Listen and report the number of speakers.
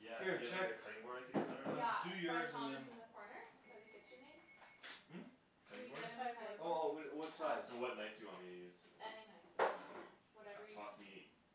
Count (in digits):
3